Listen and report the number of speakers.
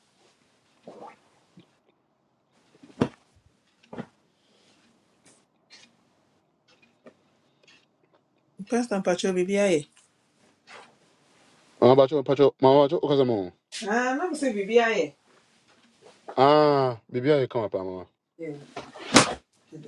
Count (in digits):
2